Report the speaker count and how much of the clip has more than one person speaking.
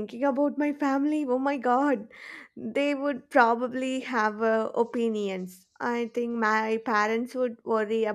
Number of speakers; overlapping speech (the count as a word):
one, no overlap